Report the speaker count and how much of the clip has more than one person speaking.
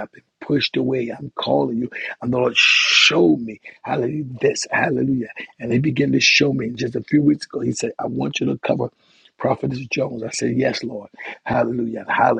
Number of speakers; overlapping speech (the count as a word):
one, no overlap